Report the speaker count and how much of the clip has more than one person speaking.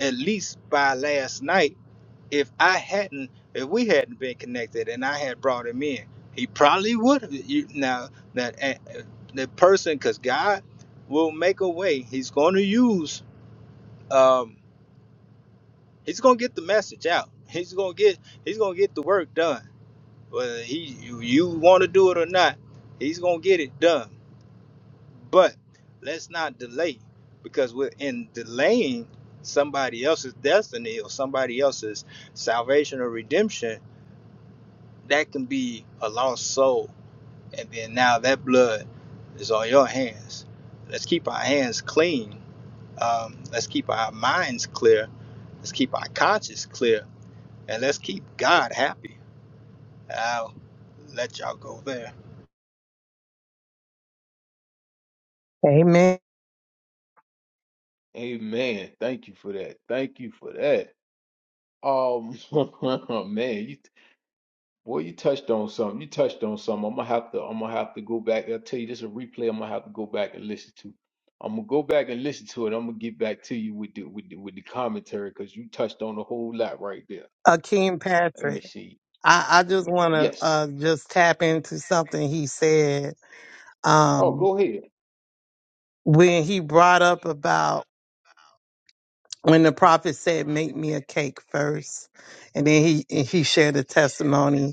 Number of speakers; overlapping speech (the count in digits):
3, about 1%